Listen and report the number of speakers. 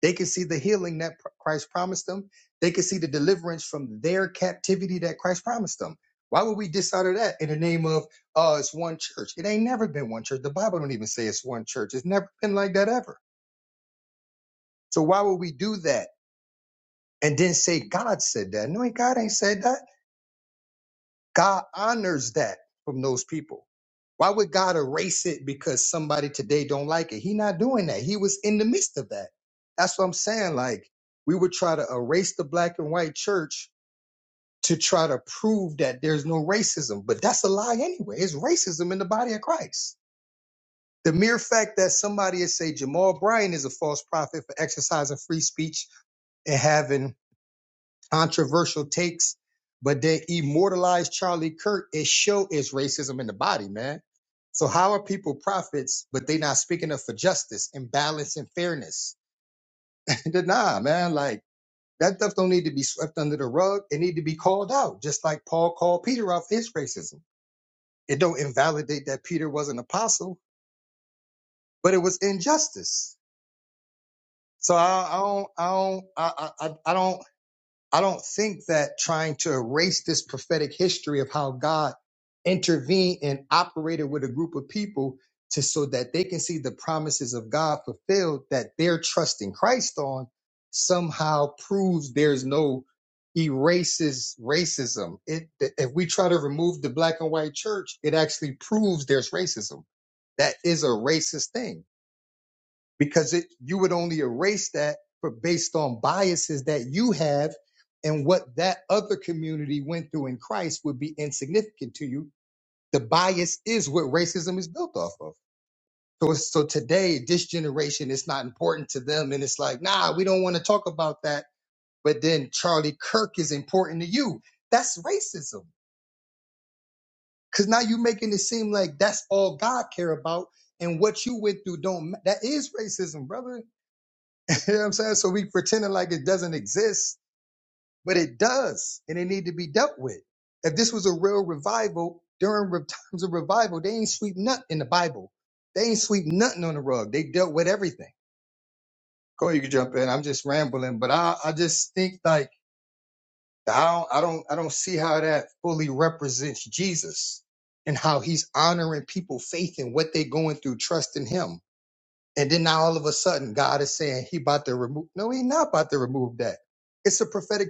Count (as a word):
one